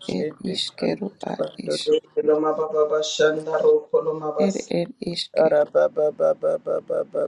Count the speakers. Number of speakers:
three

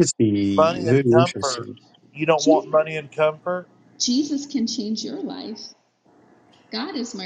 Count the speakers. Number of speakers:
three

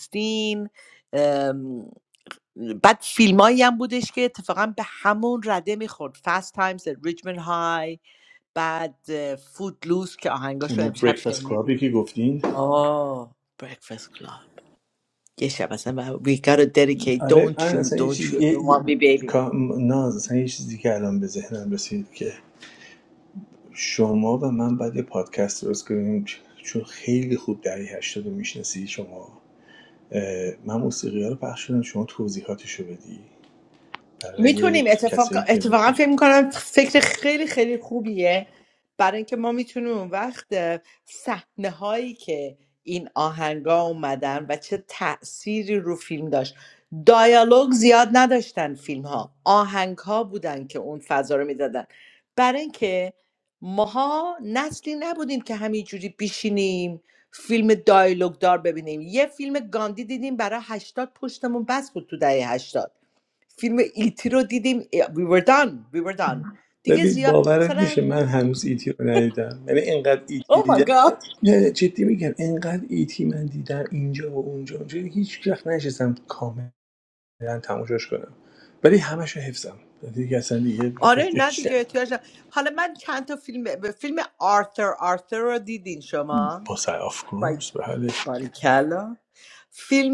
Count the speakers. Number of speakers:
two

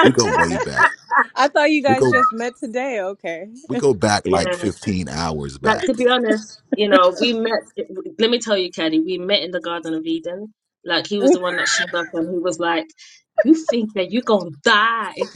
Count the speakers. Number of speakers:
three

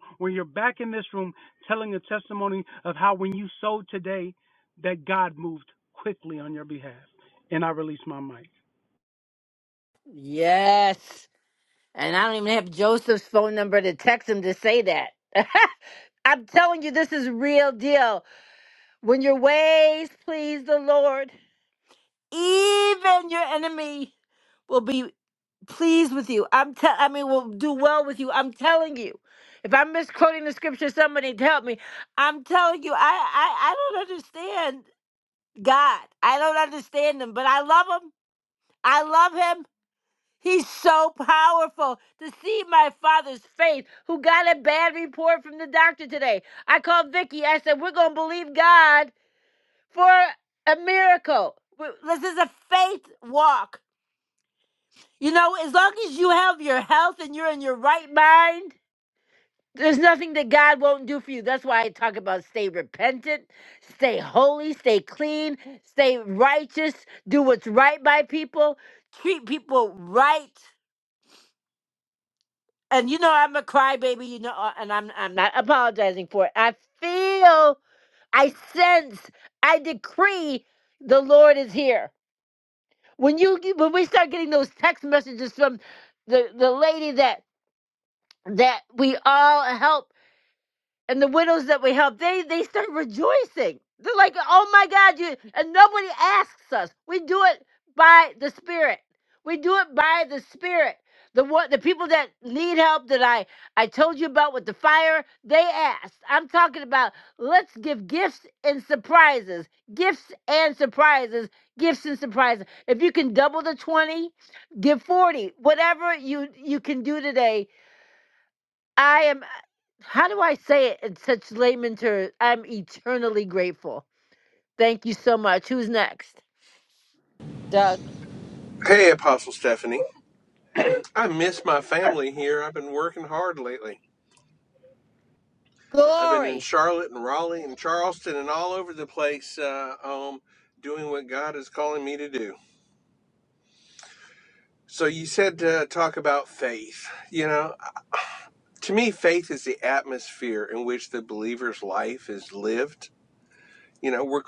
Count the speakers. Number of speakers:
three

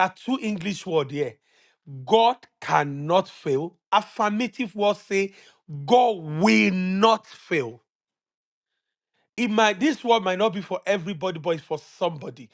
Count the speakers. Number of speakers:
one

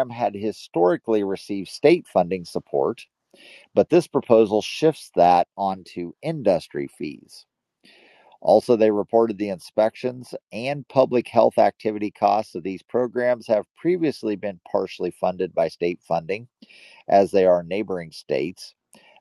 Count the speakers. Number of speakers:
one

